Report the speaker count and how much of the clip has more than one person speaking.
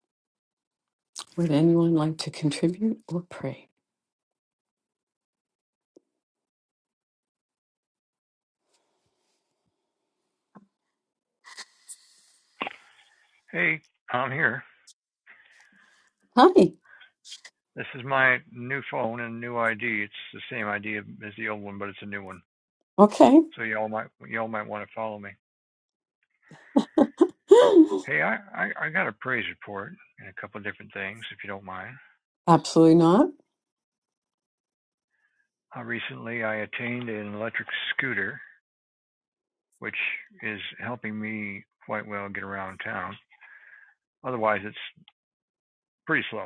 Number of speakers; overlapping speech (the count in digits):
2, no overlap